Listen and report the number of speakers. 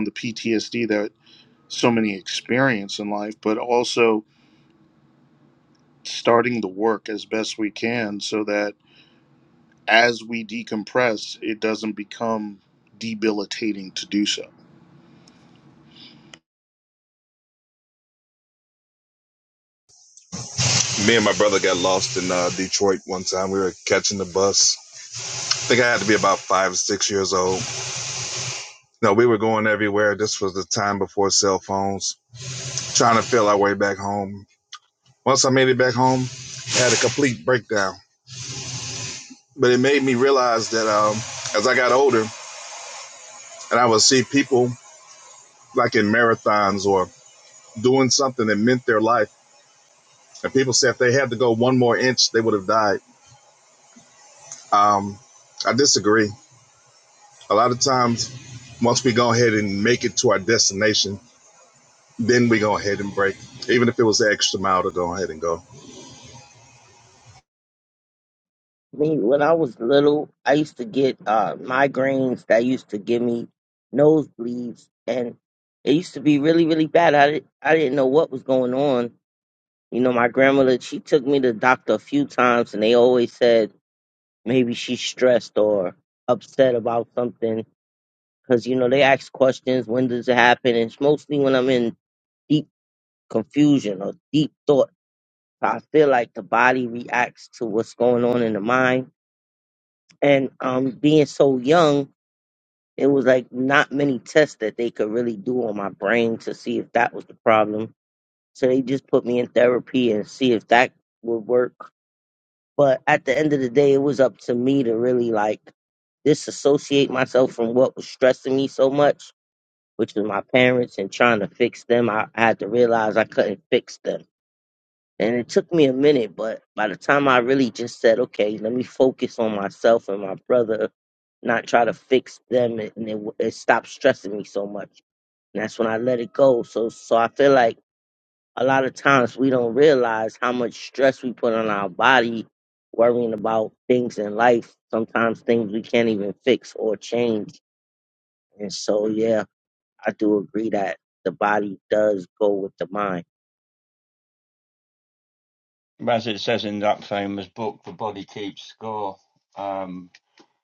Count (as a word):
four